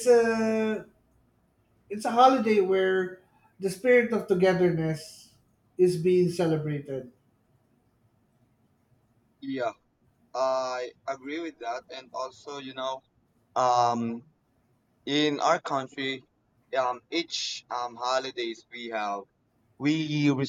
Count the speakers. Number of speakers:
2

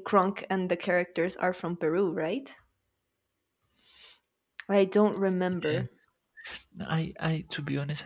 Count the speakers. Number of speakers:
2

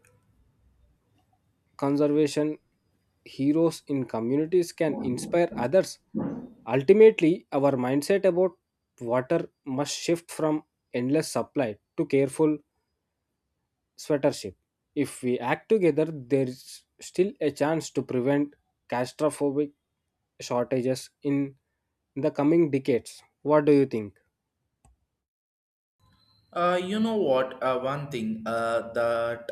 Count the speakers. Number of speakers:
2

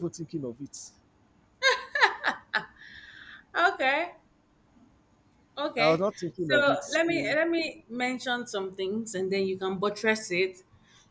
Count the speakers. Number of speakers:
2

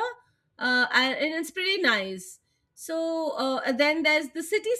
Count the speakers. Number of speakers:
1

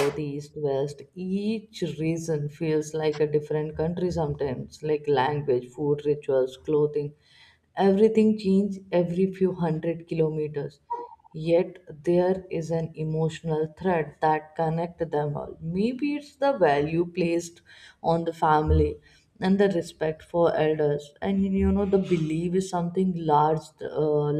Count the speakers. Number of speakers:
1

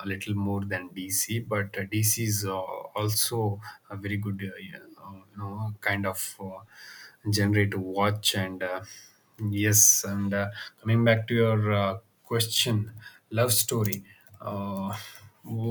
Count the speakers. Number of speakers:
1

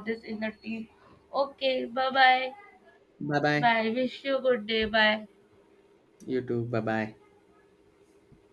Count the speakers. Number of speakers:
2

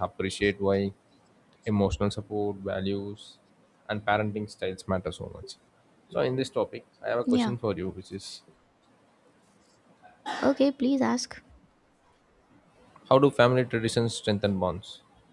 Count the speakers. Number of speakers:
2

